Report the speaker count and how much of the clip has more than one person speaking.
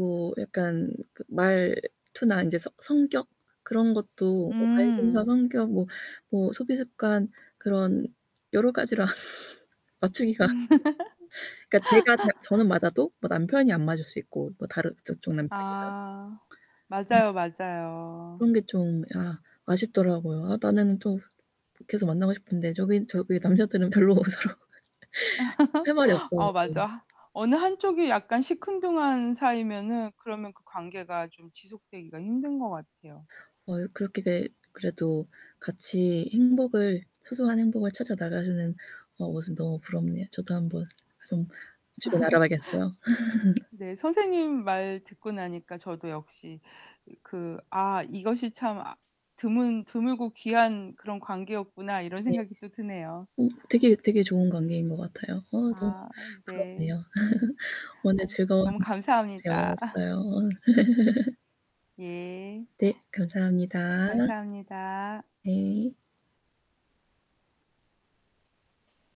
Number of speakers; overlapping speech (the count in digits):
2, about 5%